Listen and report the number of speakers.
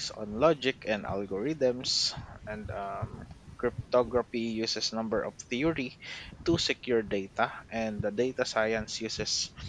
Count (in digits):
1